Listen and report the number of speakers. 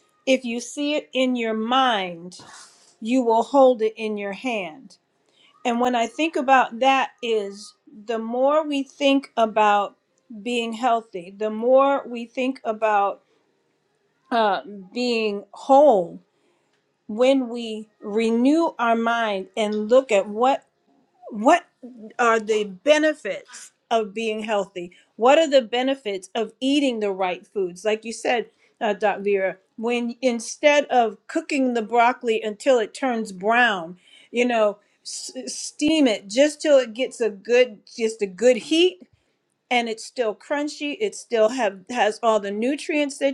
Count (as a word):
one